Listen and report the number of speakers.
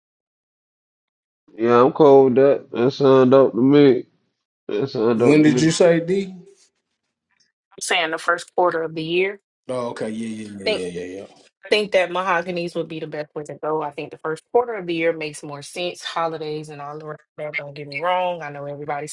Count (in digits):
3